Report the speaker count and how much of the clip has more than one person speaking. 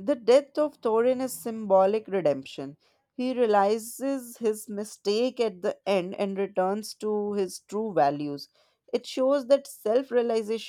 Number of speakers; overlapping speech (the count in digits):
1, no overlap